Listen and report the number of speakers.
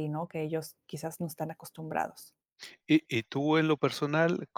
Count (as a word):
two